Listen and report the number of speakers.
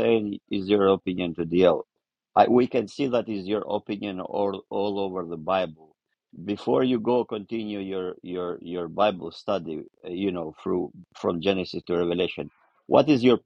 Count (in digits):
1